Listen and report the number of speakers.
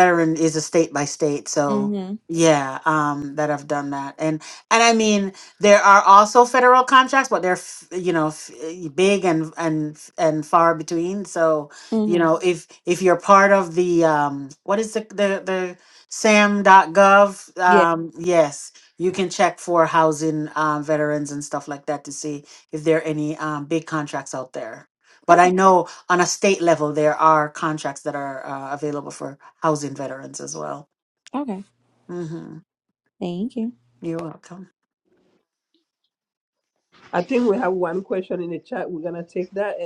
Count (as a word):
three